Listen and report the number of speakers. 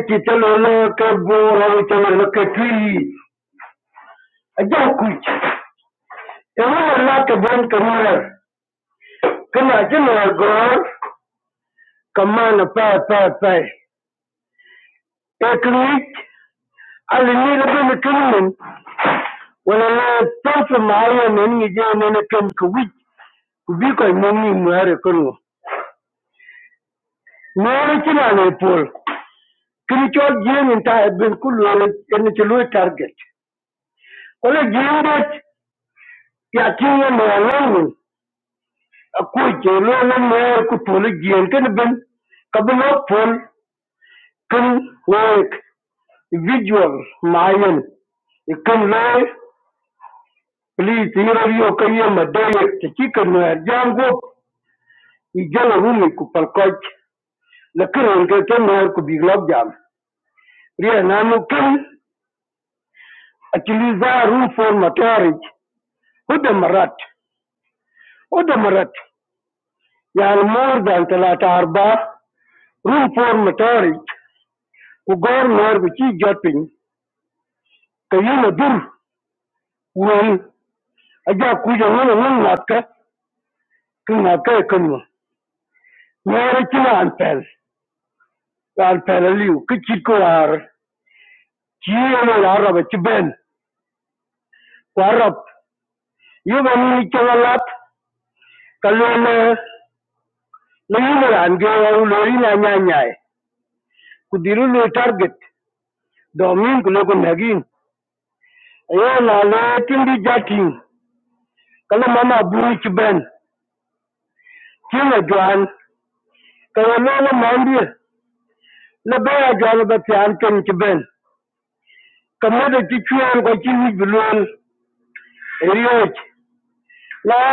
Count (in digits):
1